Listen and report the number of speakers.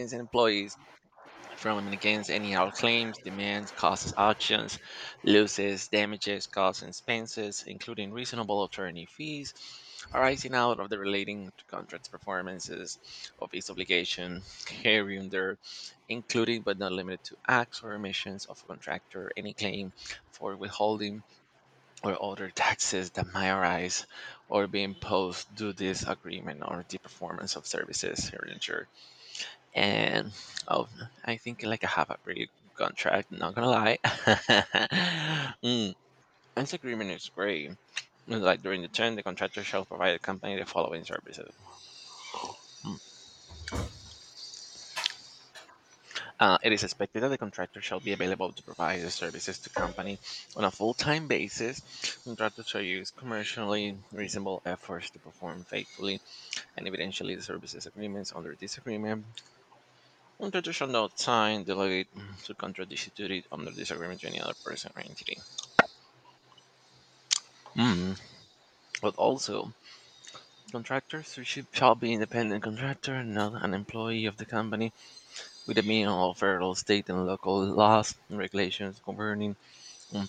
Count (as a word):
one